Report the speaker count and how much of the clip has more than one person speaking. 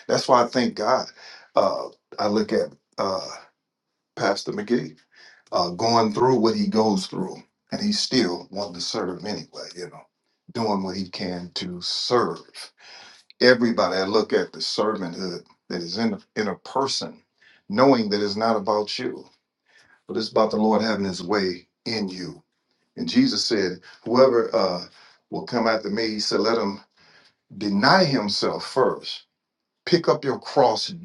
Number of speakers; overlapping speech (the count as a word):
one, no overlap